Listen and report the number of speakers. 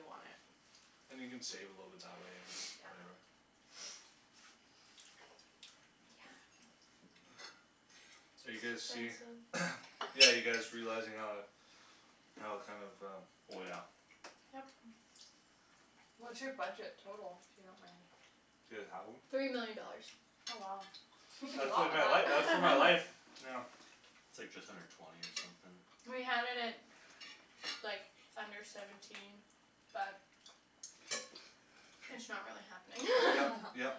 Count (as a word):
four